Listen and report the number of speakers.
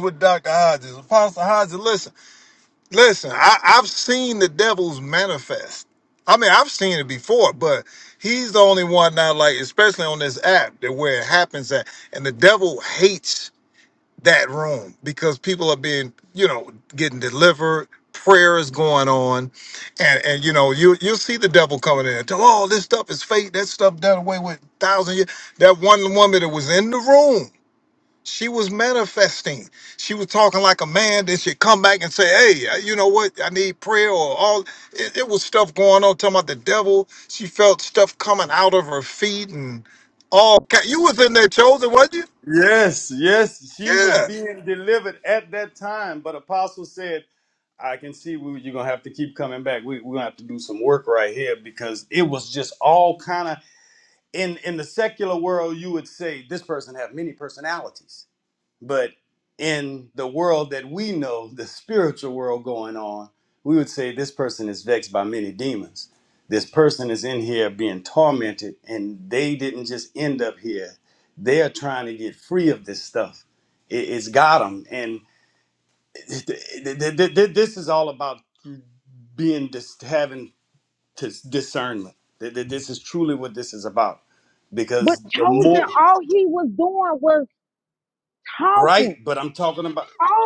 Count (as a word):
three